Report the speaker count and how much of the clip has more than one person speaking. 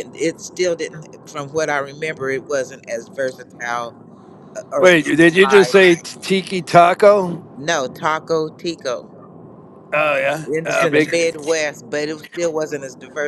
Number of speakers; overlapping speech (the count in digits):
2, about 12%